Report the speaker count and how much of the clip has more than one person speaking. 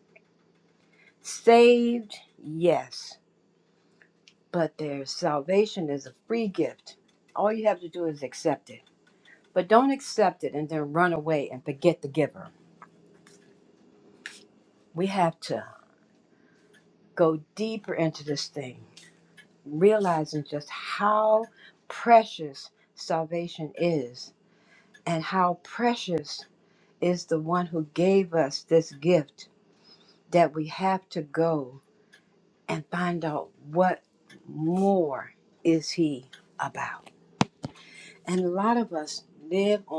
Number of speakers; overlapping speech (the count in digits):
1, no overlap